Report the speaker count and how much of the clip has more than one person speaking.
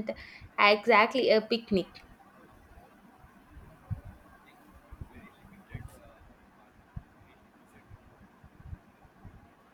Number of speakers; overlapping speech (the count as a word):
one, no overlap